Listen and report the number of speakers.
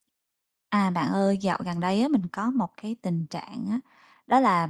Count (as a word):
one